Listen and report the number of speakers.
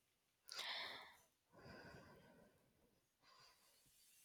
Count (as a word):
zero